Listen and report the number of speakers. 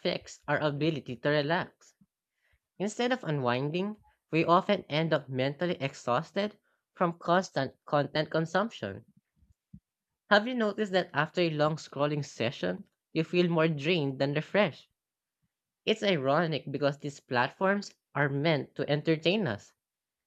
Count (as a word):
one